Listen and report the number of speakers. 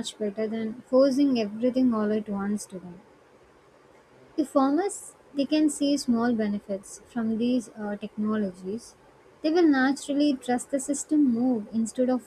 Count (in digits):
1